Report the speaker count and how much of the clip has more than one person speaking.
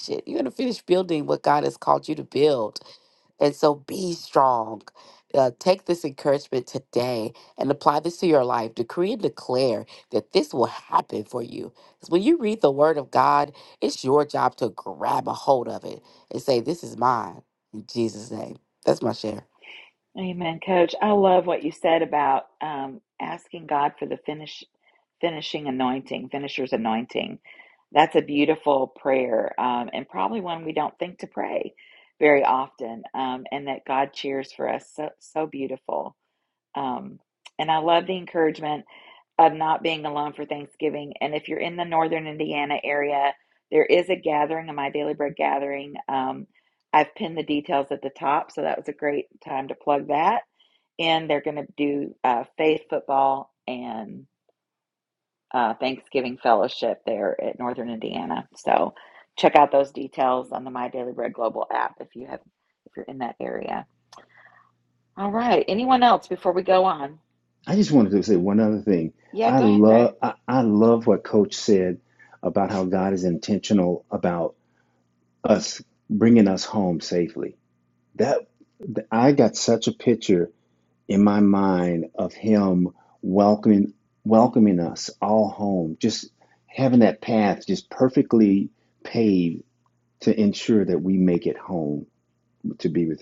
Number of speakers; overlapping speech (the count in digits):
3, about 1%